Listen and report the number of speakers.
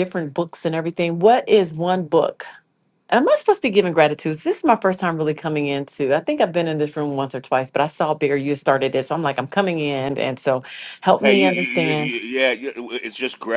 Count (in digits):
2